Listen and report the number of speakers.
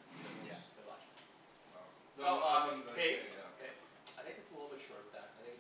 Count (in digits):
2